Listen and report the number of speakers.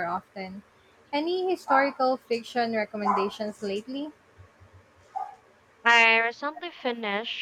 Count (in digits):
2